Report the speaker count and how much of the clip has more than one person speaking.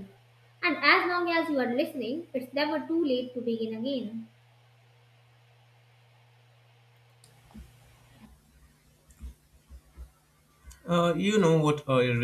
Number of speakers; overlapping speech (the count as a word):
two, no overlap